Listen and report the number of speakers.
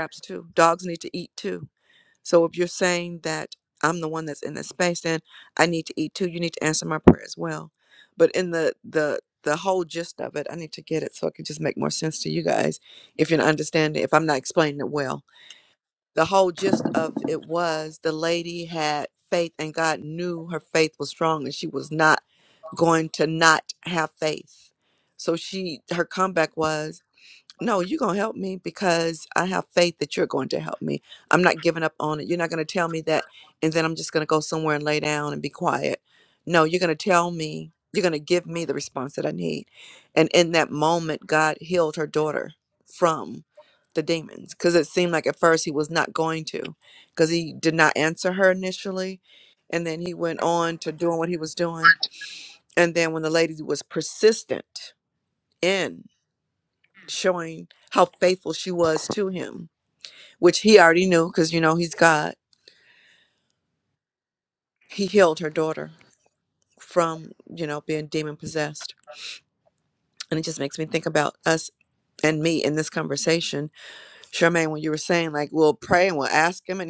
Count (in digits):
1